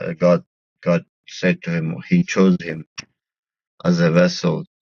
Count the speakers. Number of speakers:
1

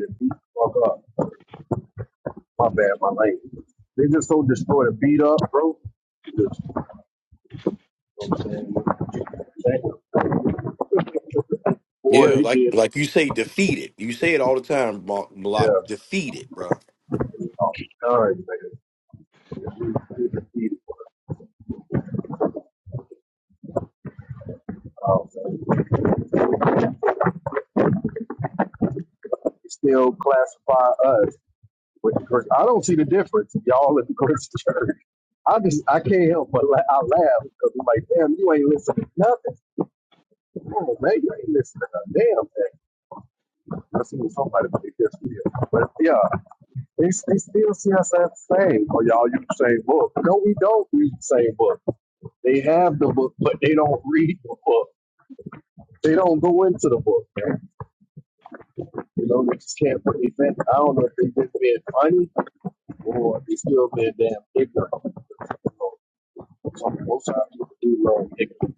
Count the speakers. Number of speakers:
2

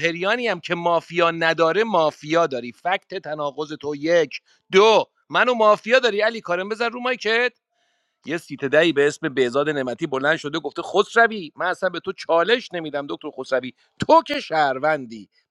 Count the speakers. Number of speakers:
1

